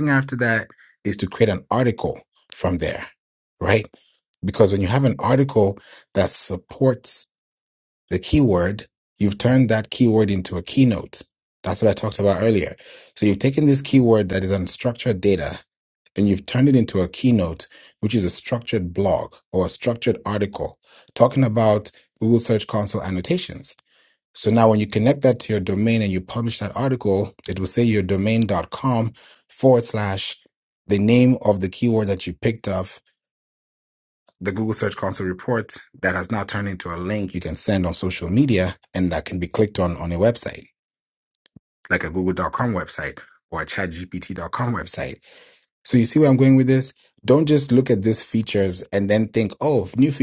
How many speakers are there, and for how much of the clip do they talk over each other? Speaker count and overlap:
one, no overlap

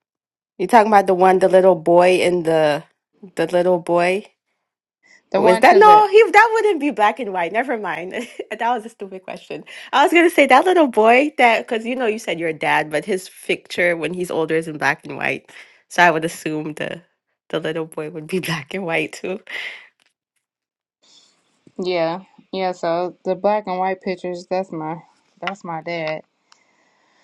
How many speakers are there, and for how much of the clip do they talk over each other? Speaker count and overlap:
two, about 2%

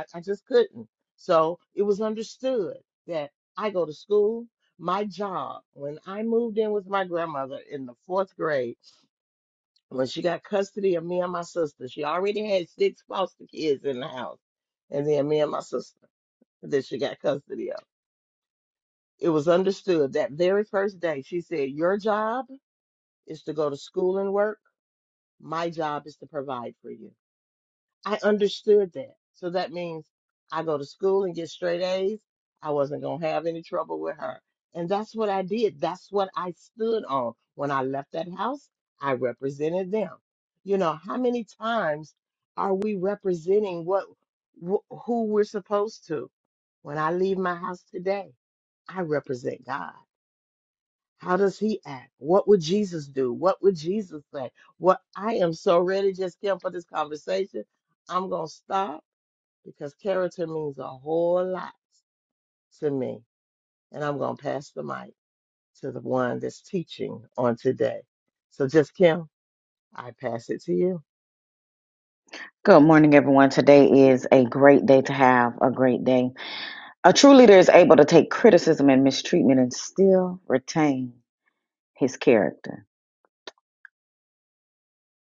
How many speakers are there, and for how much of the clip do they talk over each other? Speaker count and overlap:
two, no overlap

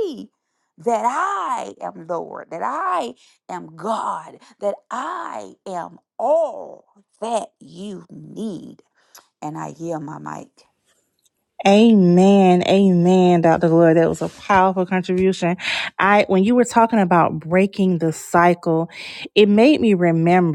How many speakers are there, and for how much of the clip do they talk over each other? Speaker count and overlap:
two, no overlap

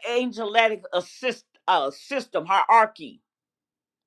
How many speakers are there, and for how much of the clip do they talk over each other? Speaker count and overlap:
one, no overlap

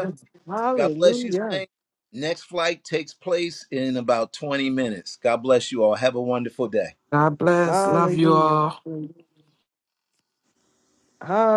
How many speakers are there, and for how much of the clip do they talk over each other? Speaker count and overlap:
three, about 16%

